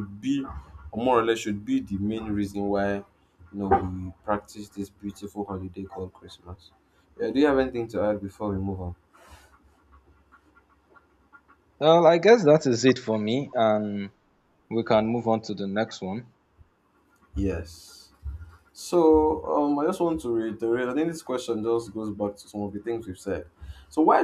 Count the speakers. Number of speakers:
2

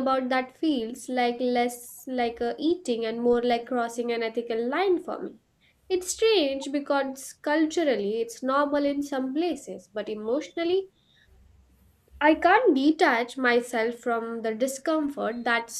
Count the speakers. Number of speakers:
1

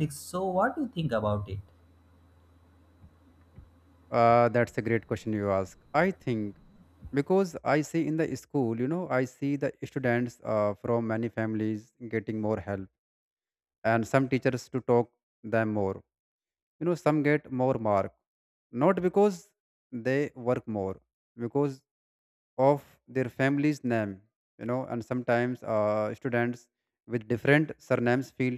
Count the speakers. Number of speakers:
2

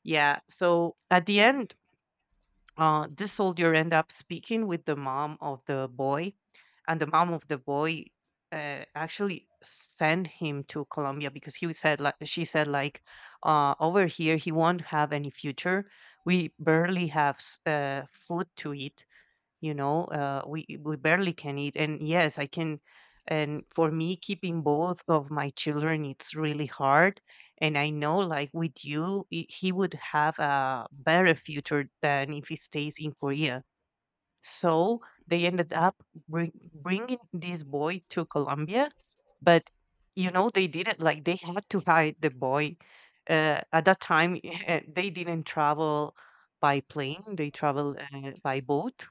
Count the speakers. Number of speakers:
1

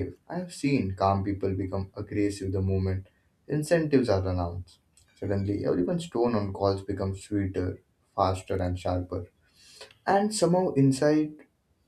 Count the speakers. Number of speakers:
1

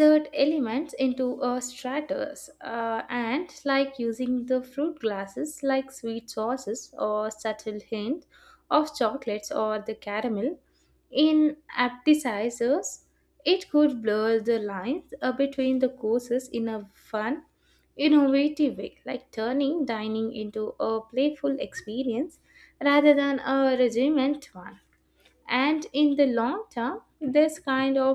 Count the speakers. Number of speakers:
1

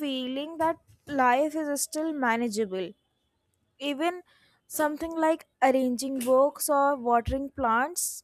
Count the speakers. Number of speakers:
1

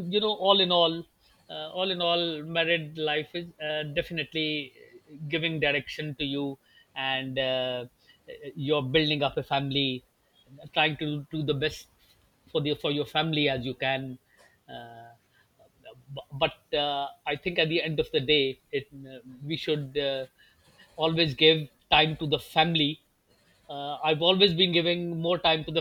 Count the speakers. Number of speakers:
1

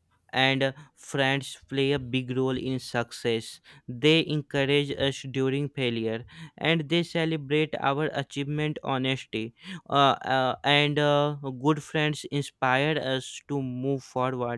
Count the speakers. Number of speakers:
1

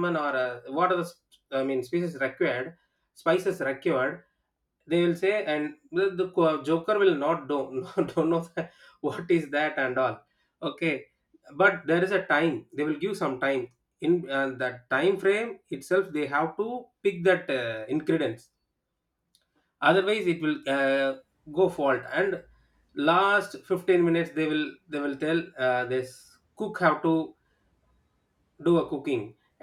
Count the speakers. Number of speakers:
1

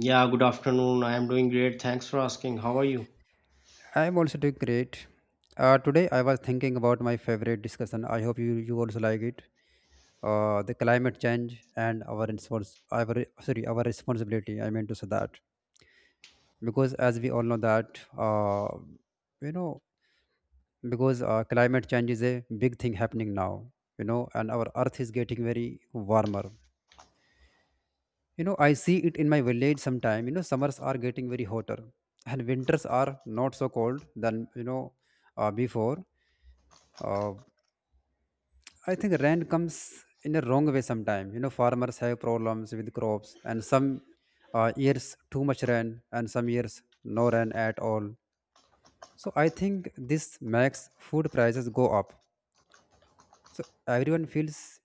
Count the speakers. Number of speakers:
2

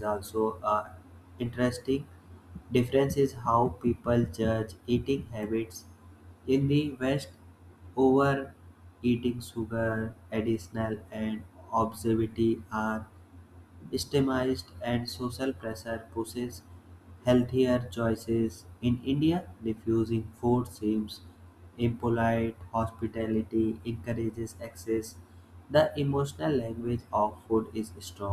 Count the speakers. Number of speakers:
1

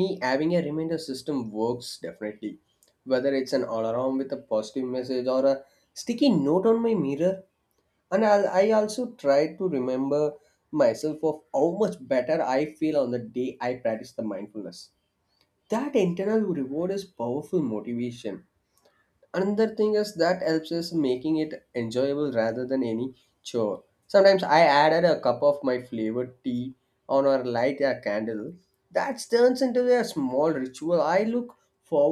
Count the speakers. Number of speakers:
1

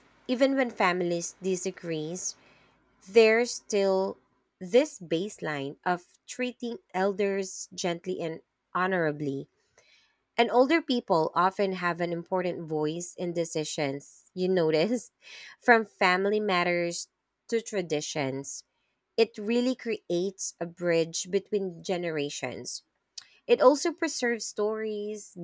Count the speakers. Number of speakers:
1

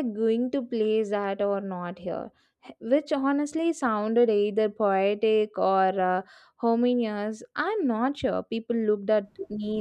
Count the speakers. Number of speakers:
1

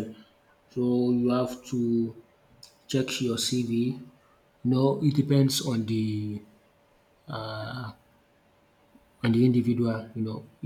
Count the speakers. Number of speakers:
1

